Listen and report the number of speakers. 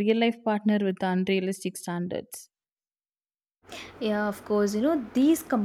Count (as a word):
two